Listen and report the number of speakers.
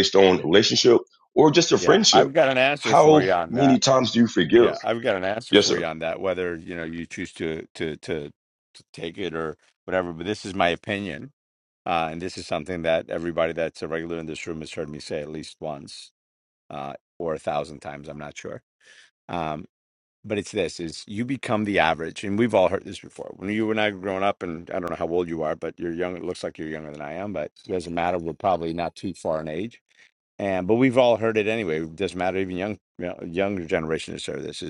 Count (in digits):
2